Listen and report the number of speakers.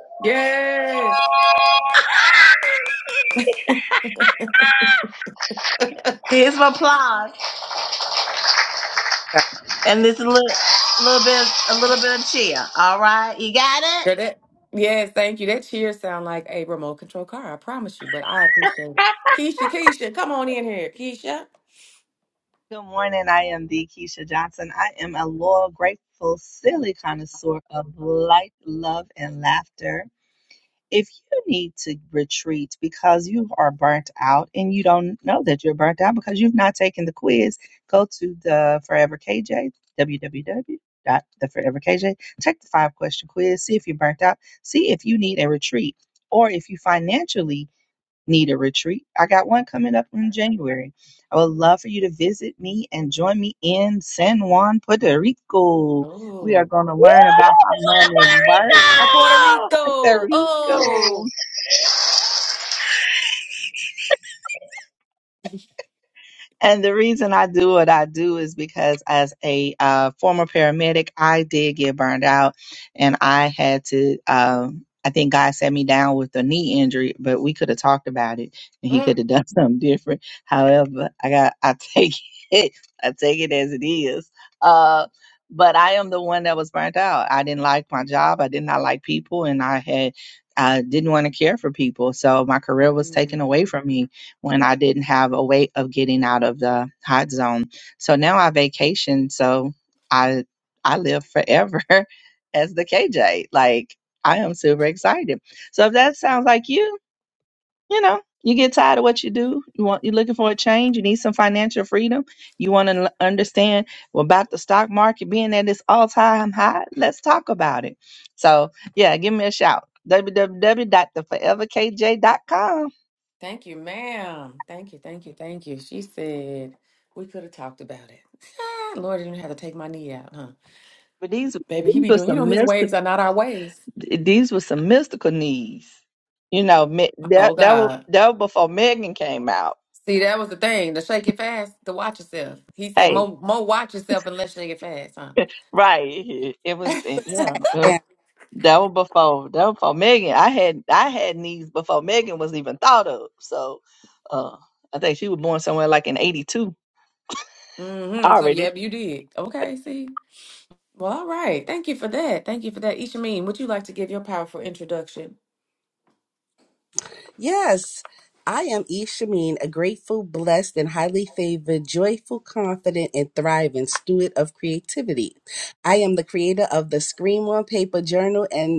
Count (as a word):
four